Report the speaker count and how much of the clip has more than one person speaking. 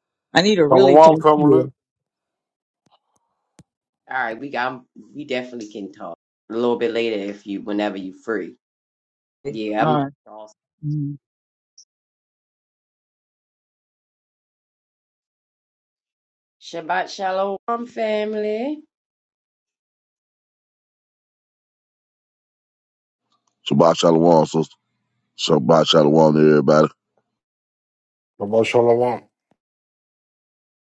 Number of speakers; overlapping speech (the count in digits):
4, about 4%